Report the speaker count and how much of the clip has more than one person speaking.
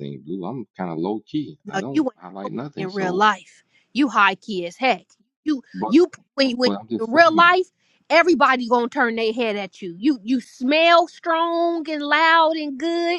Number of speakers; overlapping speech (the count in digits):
2, about 17%